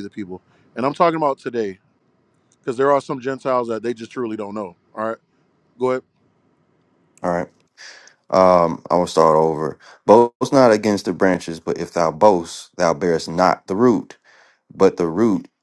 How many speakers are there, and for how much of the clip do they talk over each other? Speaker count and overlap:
two, no overlap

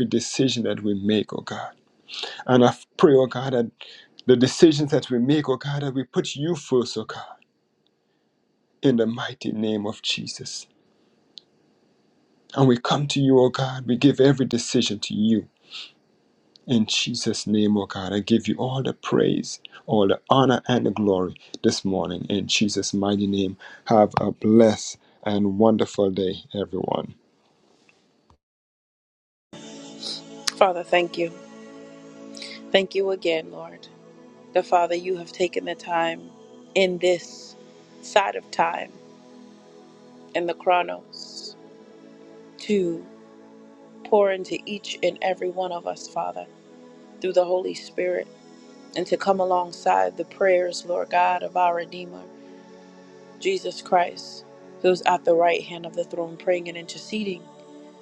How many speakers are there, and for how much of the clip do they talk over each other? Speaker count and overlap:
two, no overlap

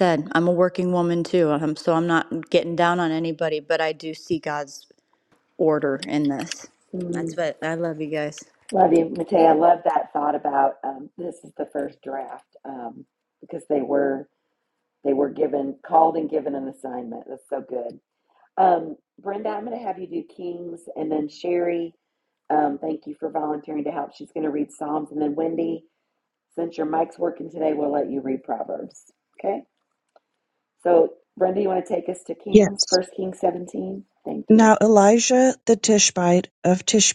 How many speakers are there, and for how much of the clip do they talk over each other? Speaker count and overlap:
three, about 2%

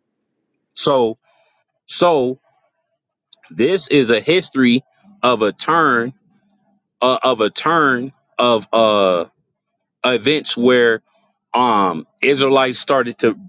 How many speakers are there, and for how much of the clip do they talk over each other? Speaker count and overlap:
one, no overlap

